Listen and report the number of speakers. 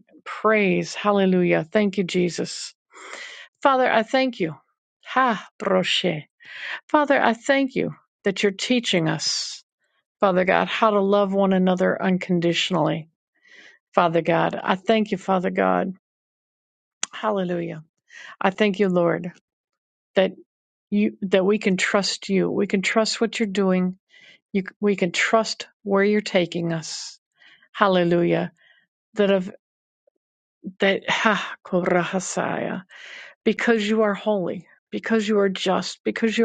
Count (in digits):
1